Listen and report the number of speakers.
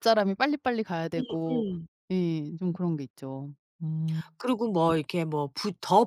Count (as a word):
two